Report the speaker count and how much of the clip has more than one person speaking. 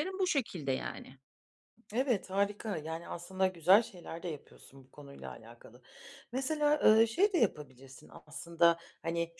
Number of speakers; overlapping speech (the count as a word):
two, no overlap